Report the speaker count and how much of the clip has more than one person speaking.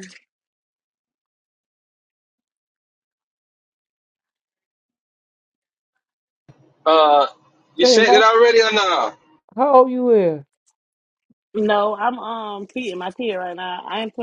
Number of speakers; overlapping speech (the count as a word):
three, about 3%